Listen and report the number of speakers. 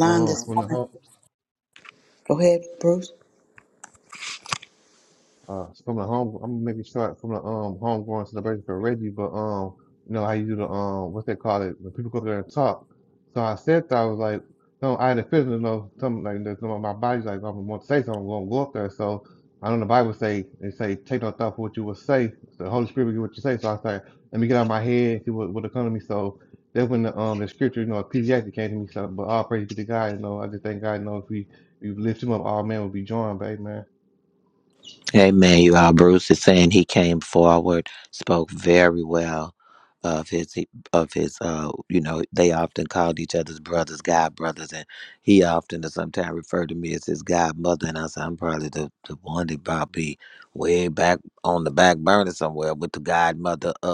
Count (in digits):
3